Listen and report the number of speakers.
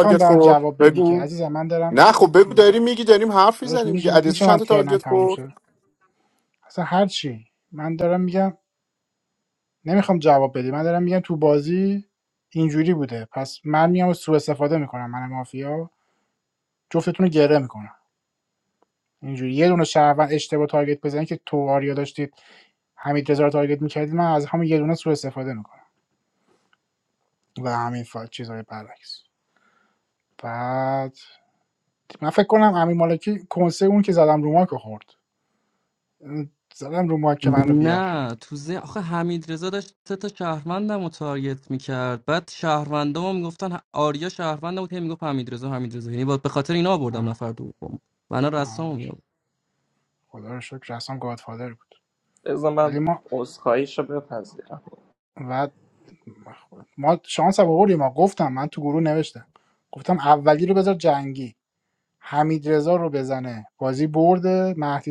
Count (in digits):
4